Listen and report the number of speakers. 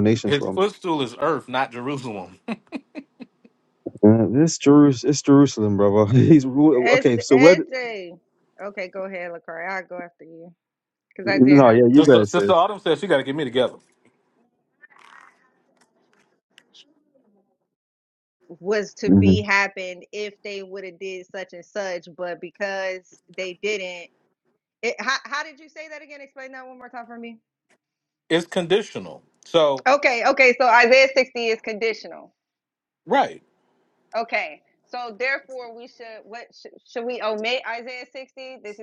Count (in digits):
3